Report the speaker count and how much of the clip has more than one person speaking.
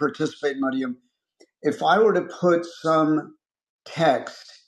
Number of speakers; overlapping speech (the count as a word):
one, no overlap